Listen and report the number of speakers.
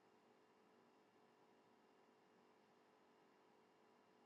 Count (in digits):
0